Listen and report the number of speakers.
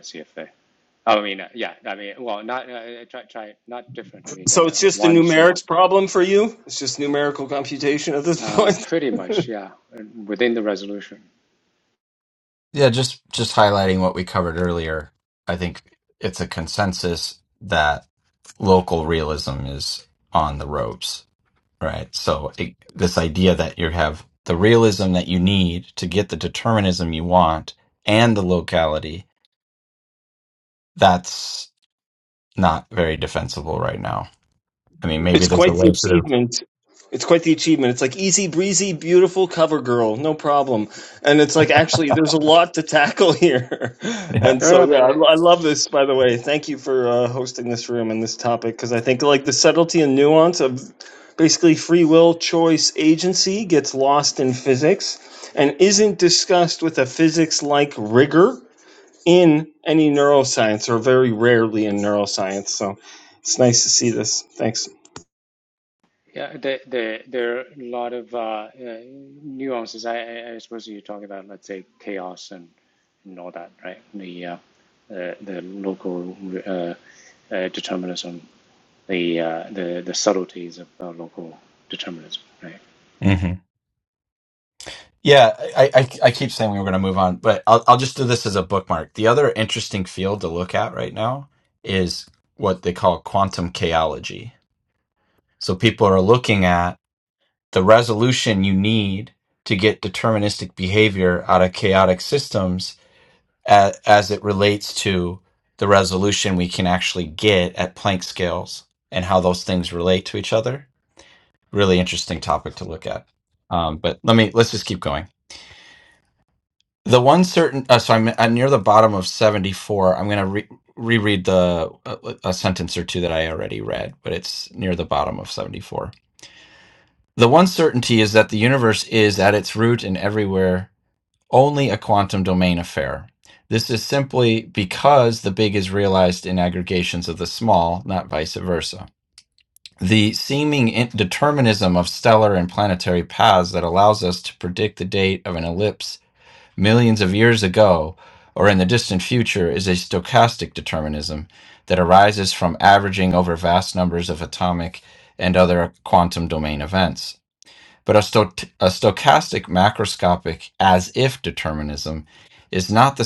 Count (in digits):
3